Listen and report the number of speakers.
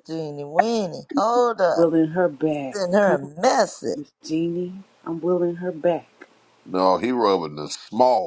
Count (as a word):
three